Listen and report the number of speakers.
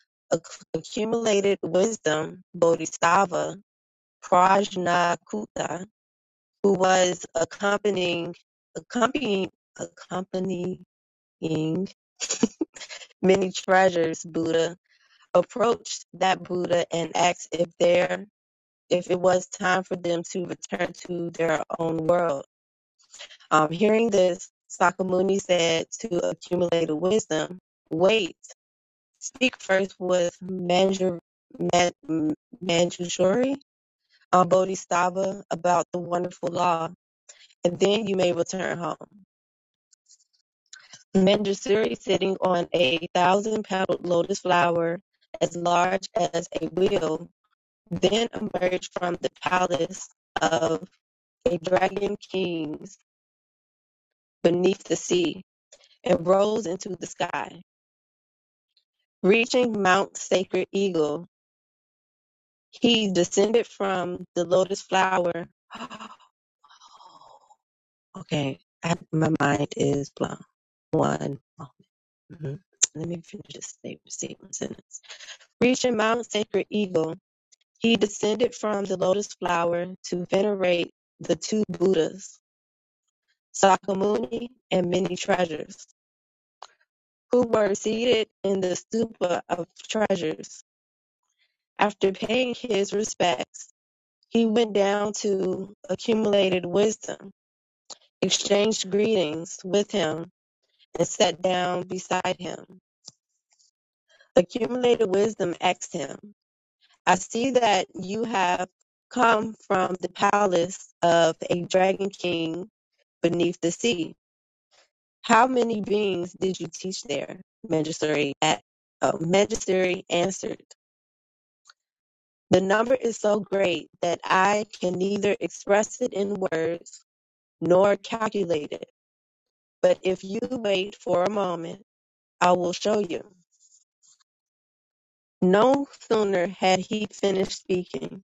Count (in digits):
1